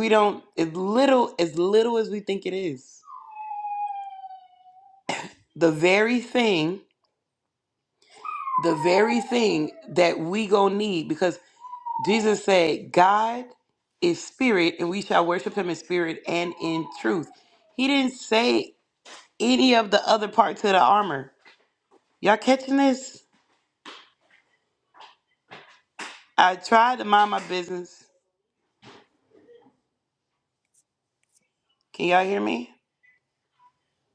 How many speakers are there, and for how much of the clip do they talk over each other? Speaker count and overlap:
1, no overlap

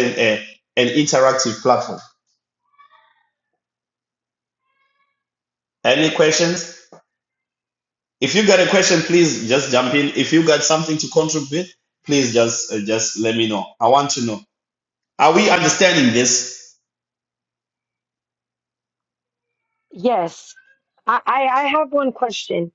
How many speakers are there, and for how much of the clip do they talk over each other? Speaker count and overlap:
2, no overlap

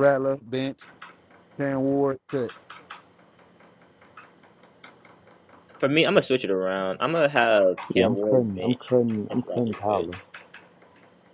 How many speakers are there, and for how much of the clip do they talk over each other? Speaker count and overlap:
3, about 16%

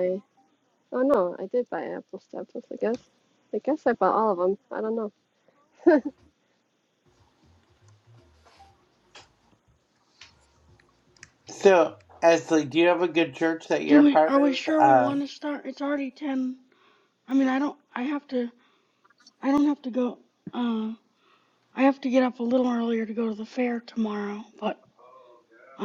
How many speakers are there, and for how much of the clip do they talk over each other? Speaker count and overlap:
3, about 5%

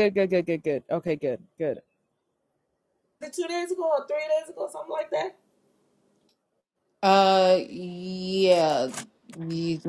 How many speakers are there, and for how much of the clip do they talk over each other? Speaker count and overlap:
3, no overlap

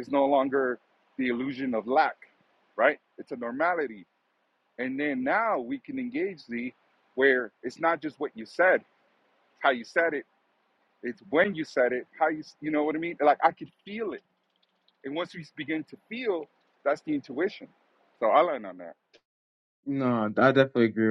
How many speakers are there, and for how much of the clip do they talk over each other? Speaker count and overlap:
2, no overlap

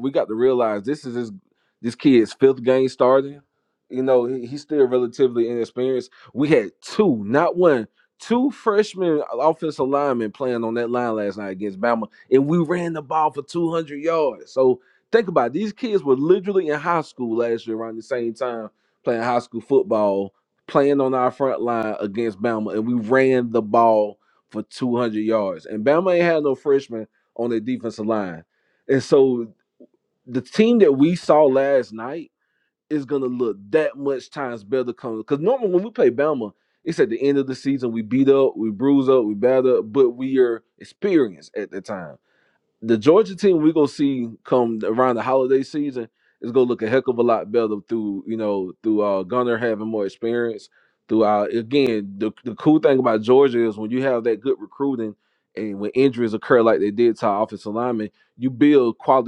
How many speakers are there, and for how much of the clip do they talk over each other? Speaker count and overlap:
1, no overlap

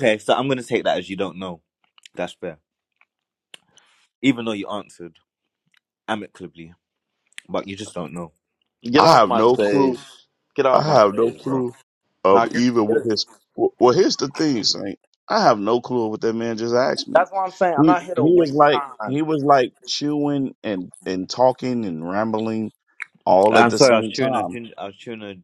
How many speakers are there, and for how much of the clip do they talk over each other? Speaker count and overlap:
3, about 21%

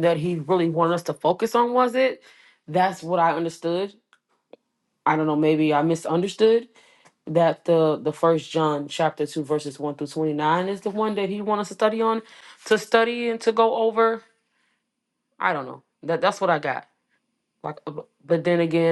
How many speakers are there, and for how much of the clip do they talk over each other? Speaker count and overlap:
1, no overlap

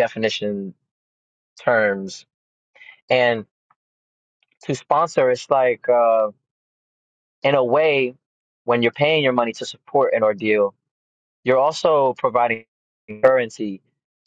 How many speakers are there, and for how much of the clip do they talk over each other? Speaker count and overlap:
1, no overlap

